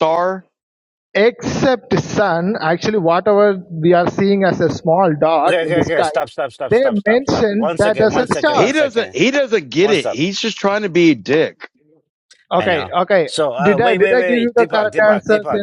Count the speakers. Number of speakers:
three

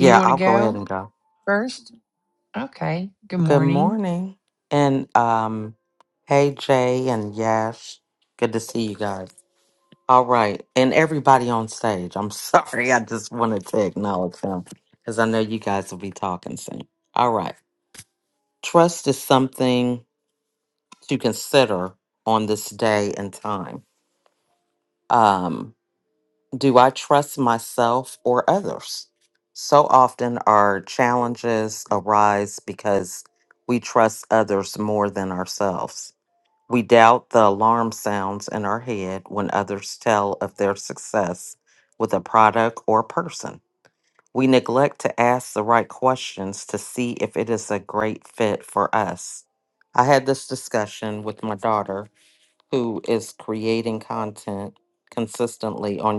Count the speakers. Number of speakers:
two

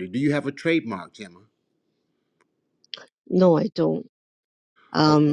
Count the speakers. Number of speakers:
two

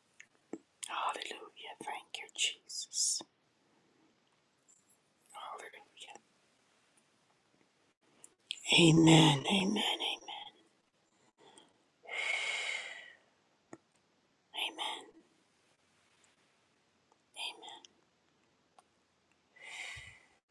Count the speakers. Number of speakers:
one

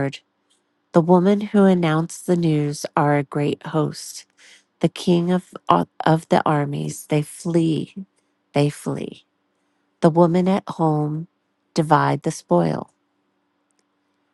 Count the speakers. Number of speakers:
one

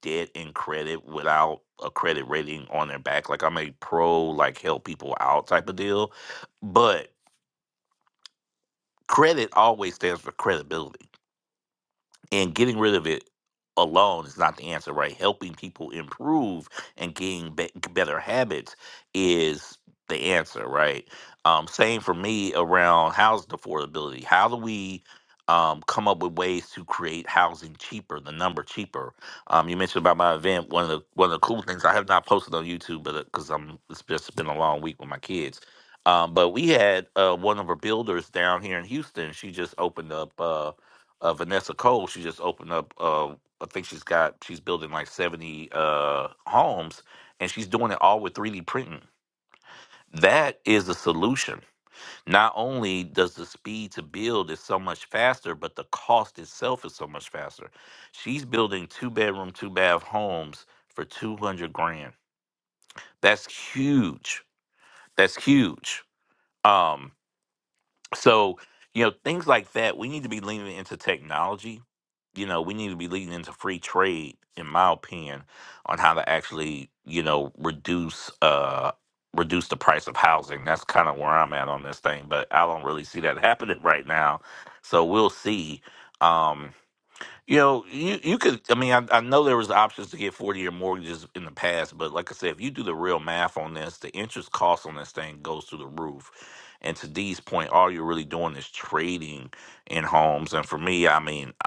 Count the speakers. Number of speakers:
one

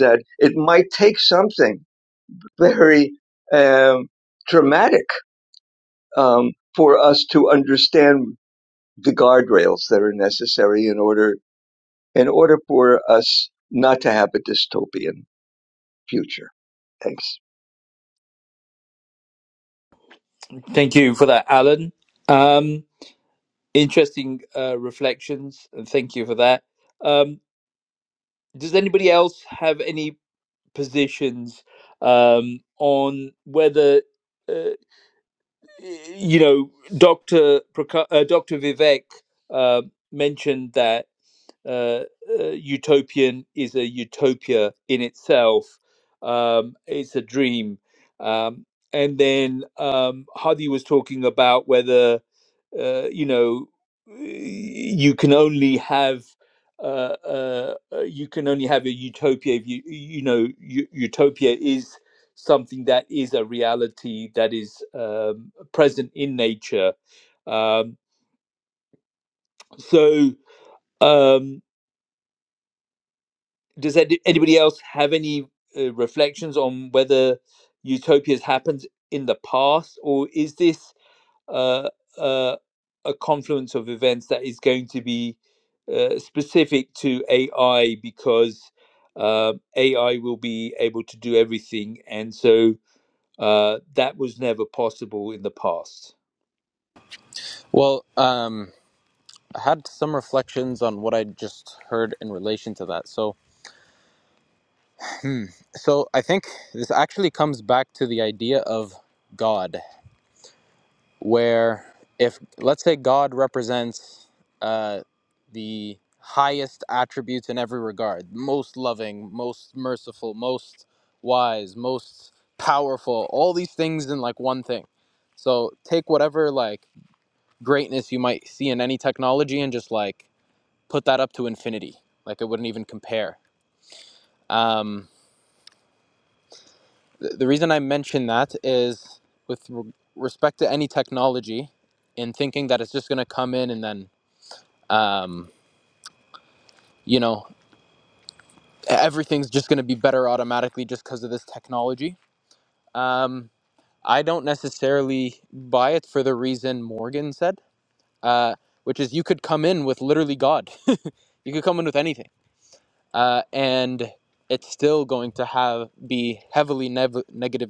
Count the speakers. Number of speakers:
three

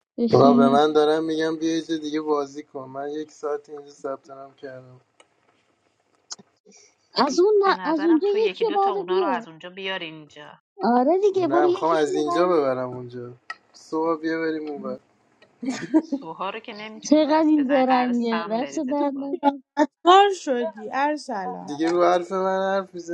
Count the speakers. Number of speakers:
four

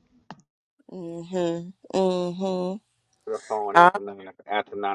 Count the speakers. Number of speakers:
two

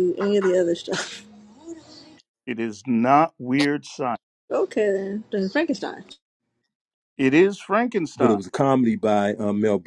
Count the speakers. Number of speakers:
three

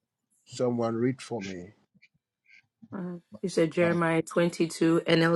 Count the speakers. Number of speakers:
two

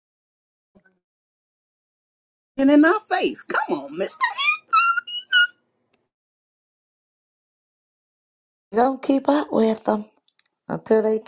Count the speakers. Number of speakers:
two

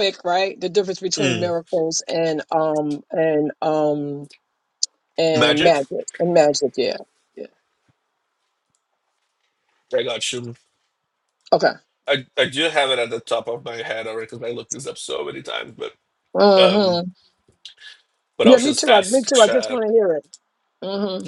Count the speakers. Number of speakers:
two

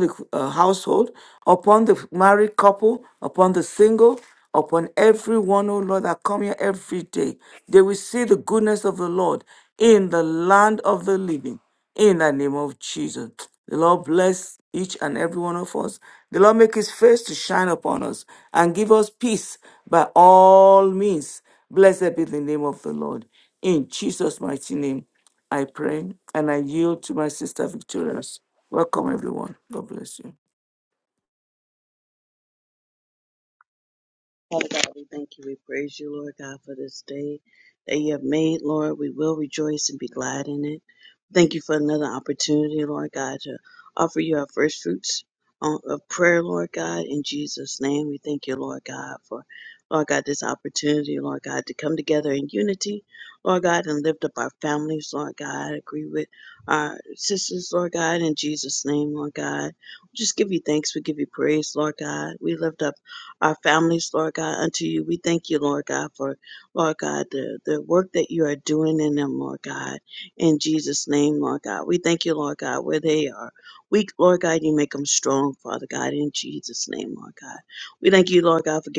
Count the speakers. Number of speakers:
two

